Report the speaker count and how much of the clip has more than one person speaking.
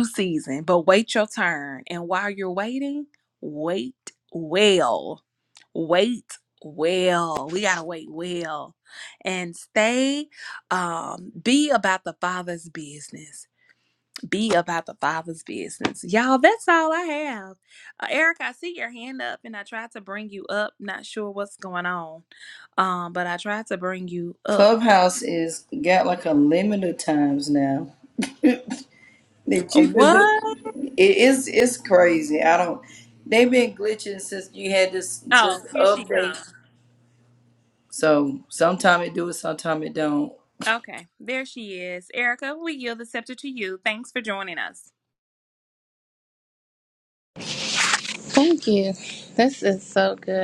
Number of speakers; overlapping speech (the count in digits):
3, about 4%